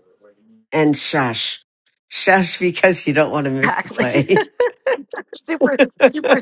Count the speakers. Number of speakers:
2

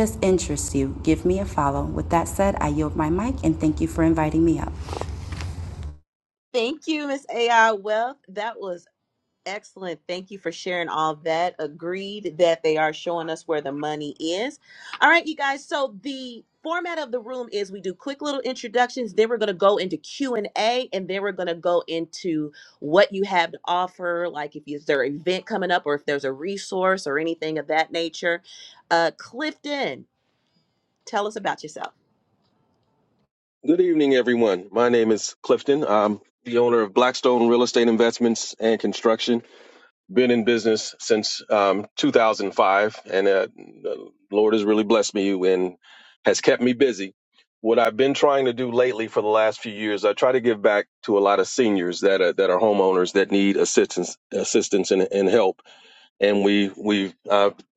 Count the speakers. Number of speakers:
3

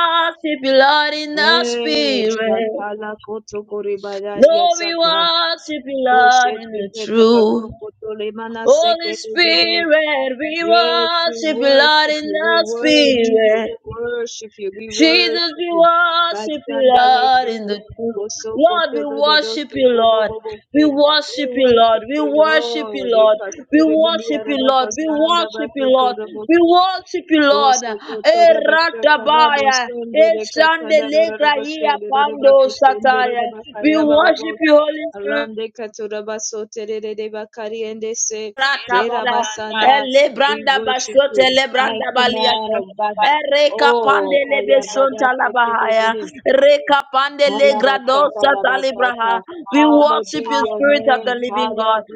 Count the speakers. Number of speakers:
2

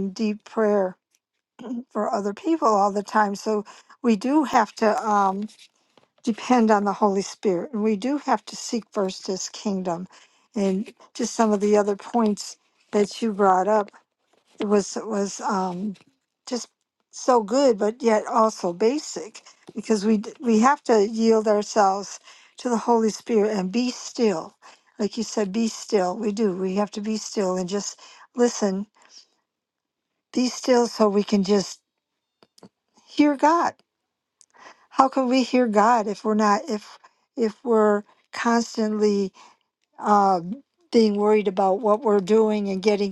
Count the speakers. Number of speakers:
1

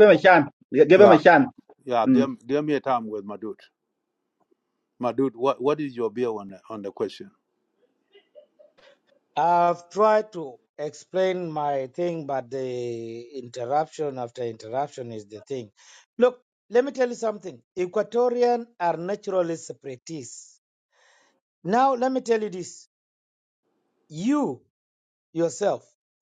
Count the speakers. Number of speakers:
3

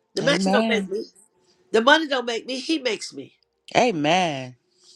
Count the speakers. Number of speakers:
2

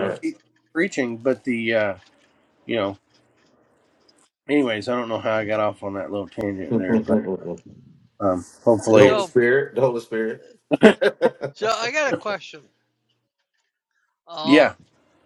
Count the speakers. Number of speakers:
3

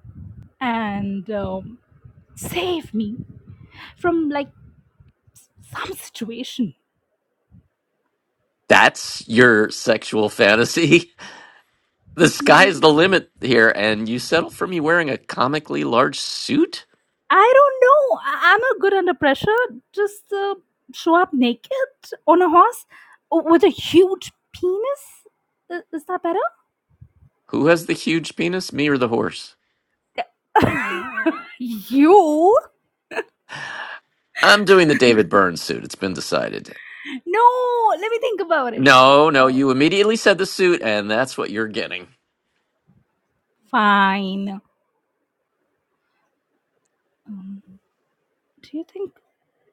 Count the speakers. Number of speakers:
2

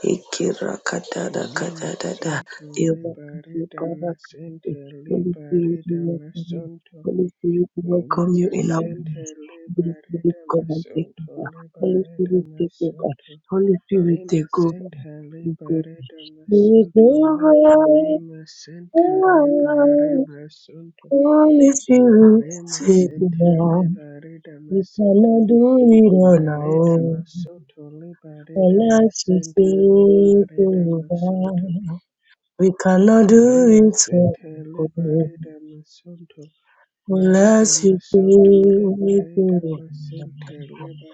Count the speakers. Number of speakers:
2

